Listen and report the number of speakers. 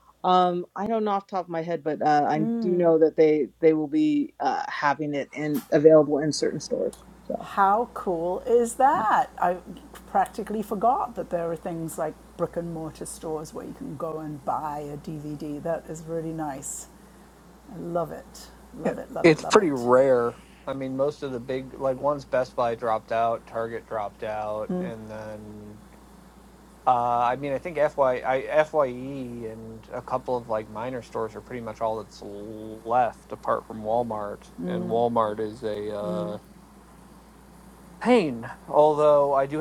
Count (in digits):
3